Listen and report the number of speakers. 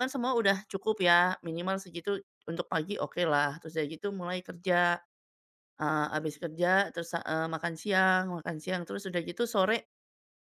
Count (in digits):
1